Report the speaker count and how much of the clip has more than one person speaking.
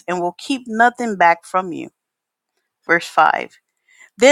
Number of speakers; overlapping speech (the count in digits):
1, no overlap